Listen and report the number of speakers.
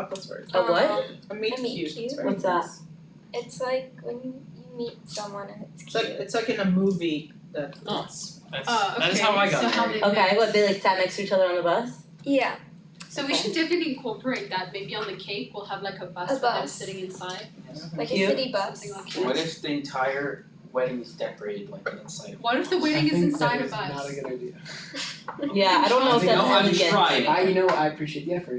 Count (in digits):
6